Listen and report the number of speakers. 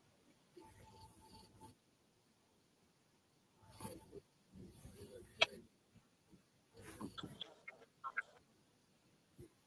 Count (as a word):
zero